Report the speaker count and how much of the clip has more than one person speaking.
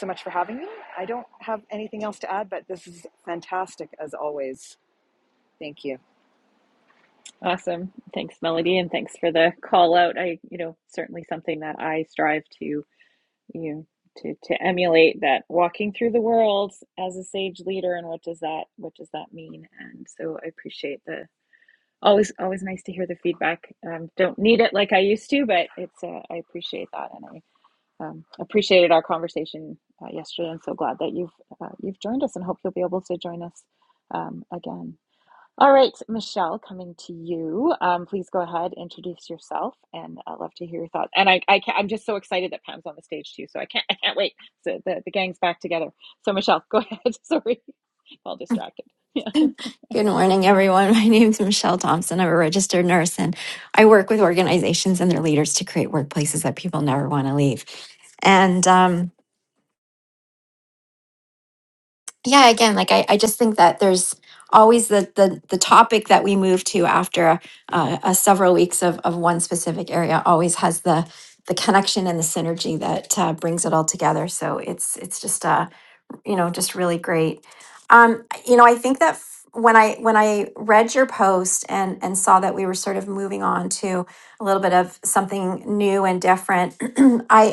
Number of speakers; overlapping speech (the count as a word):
three, no overlap